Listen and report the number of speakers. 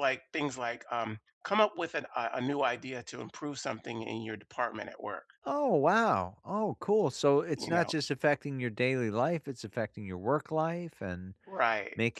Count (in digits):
2